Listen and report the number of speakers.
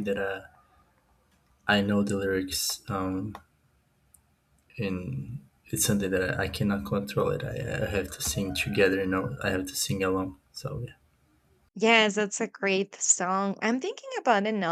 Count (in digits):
2